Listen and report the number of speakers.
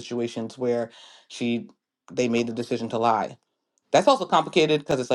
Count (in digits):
1